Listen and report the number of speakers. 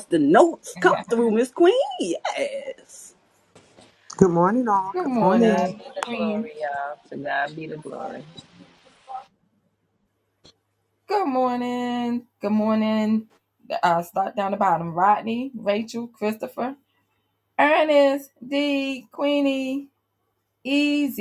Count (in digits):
4